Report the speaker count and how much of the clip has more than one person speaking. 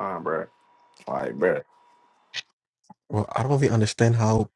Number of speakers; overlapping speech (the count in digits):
2, no overlap